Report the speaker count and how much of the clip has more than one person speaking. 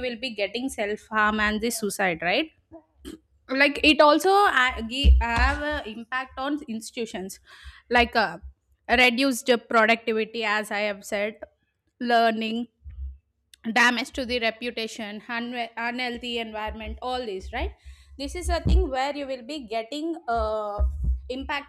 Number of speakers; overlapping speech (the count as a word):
one, no overlap